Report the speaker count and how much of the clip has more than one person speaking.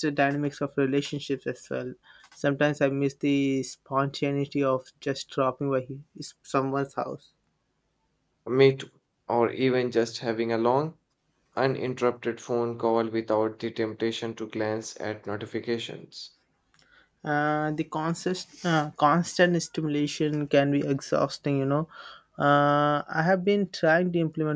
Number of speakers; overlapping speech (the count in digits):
2, no overlap